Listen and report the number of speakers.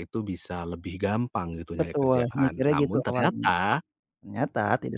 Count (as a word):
two